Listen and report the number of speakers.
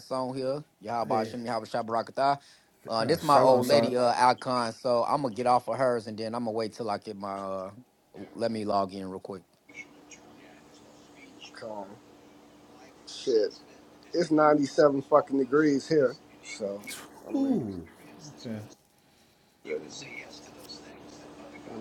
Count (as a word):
three